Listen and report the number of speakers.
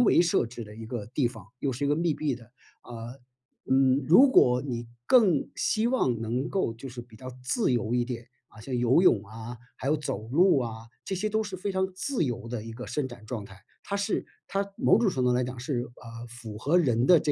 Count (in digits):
1